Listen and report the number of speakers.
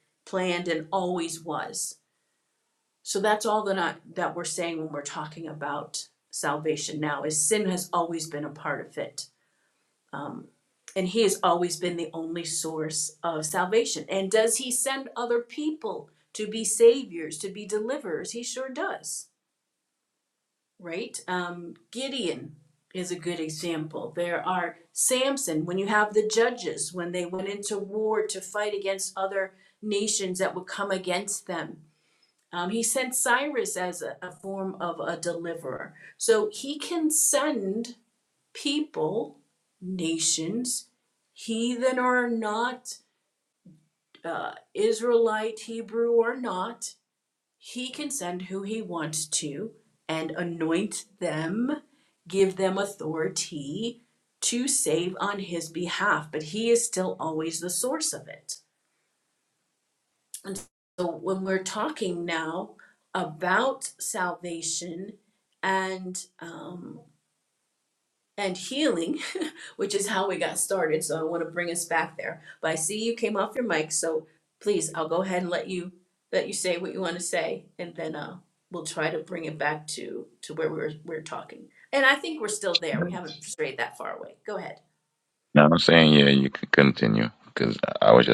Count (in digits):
2